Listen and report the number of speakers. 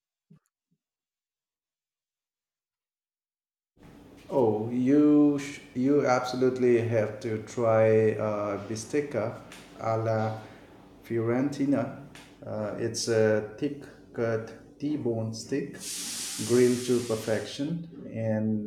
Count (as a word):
one